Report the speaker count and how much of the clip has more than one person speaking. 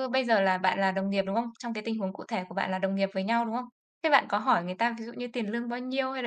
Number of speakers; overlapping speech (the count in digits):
1, no overlap